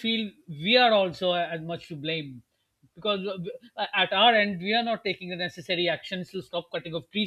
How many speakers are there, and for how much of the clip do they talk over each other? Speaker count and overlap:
1, no overlap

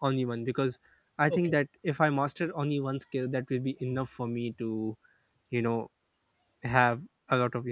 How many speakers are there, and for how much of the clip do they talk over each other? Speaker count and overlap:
1, no overlap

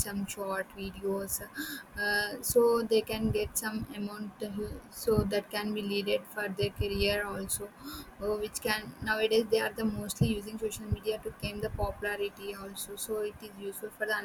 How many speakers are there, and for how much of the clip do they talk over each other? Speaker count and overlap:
1, no overlap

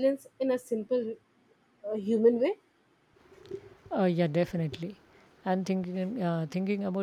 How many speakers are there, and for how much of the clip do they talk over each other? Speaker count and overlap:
2, no overlap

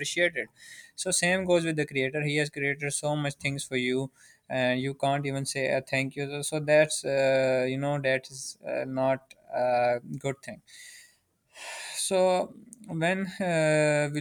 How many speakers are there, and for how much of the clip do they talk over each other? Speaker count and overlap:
1, no overlap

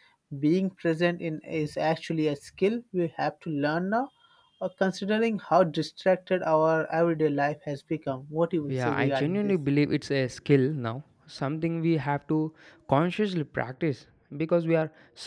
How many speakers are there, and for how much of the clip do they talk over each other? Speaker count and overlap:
2, about 6%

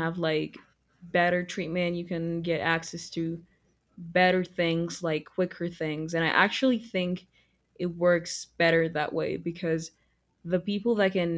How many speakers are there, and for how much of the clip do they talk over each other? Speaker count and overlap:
1, no overlap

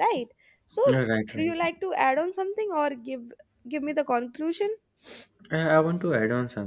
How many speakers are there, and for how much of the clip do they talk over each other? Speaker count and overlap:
2, about 3%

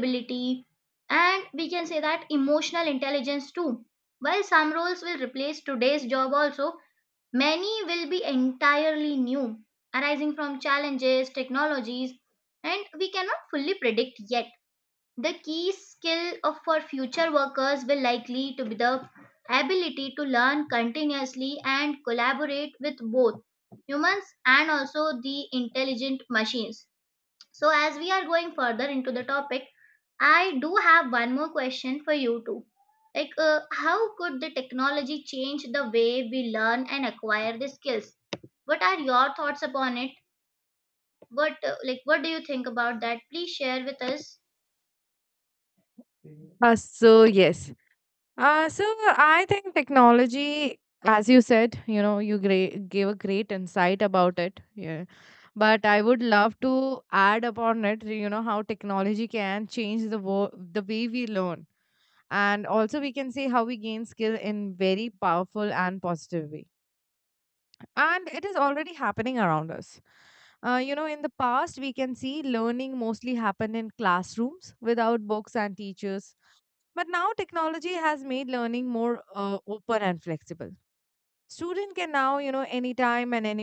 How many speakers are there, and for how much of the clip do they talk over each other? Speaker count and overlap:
2, no overlap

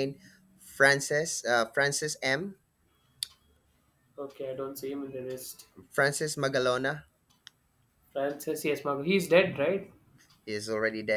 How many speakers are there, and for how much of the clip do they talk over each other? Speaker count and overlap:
2, no overlap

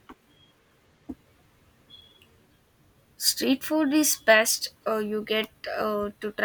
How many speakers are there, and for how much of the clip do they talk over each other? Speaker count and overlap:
1, no overlap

